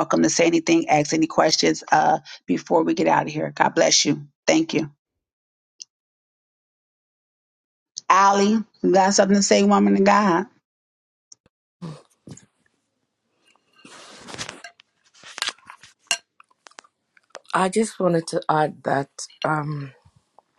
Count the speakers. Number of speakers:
two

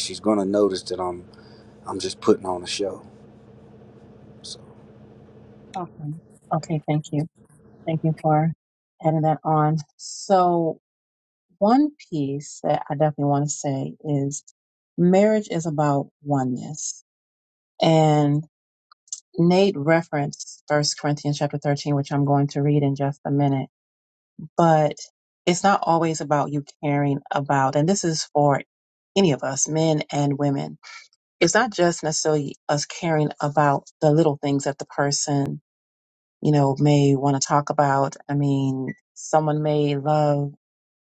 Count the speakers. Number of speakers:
two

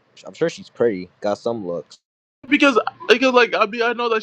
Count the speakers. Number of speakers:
two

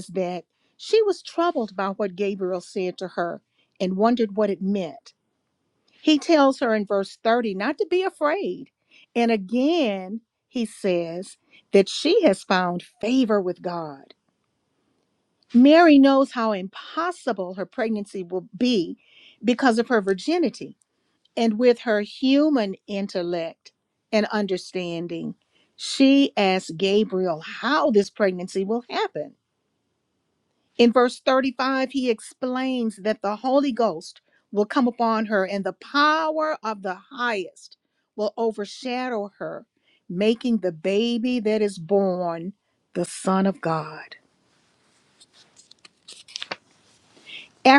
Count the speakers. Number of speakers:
one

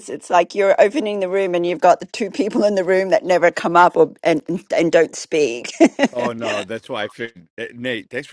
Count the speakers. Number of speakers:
two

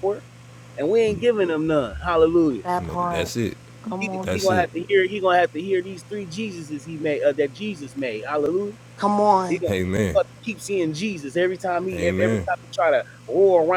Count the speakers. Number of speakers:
three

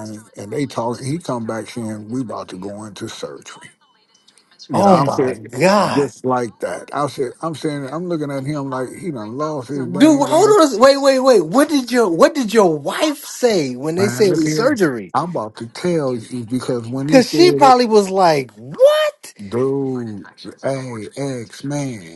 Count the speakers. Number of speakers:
two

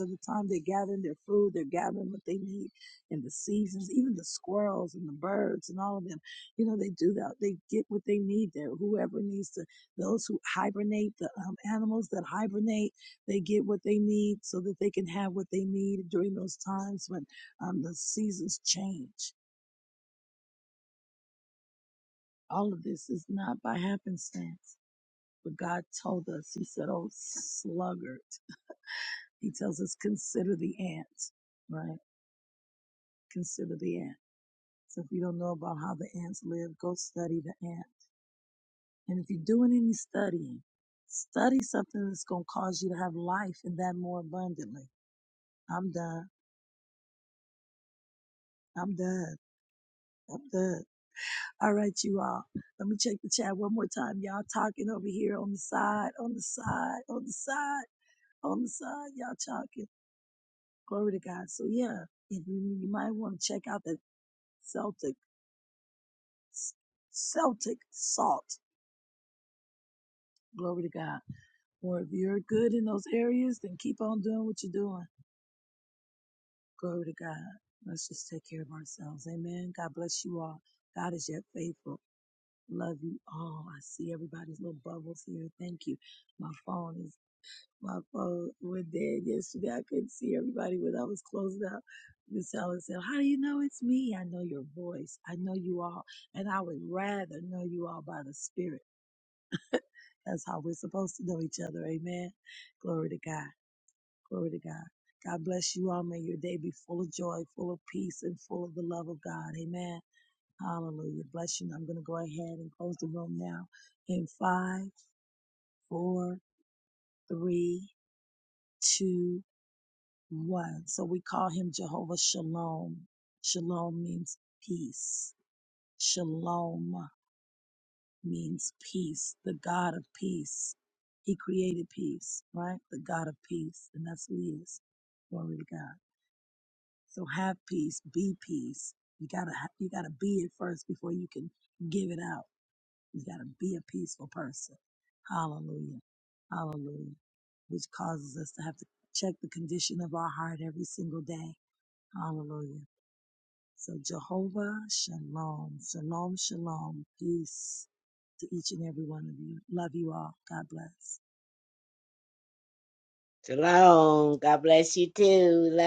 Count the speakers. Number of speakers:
two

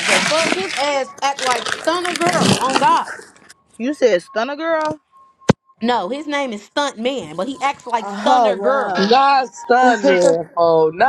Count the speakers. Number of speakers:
three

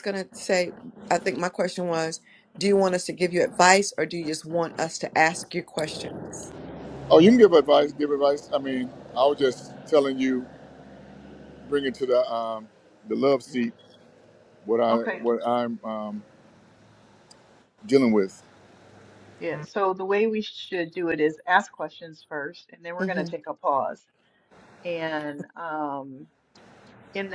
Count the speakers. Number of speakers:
three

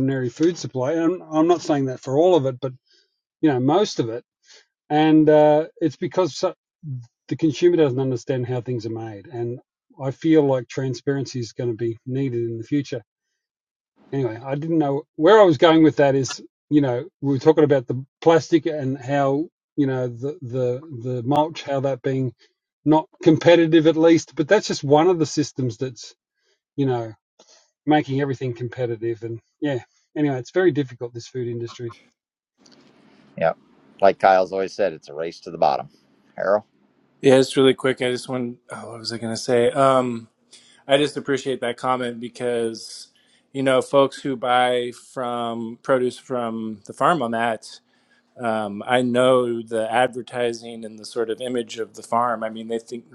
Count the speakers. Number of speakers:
three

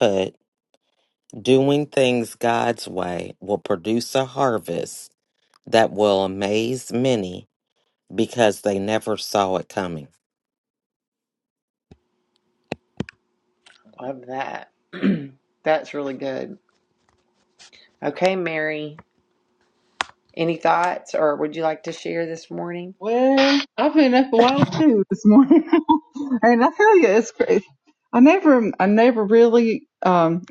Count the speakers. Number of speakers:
three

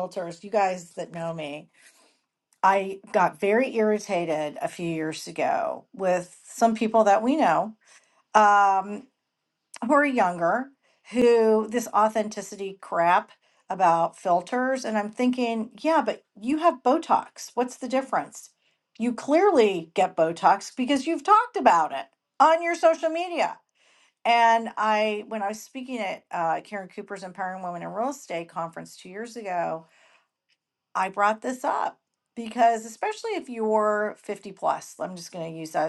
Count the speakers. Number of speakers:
one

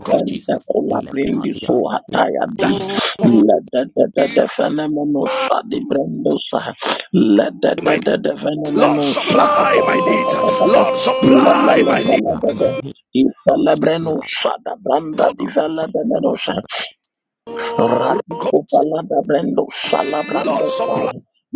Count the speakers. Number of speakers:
three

